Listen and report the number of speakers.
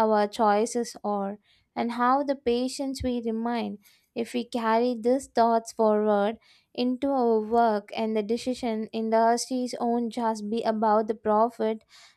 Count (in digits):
1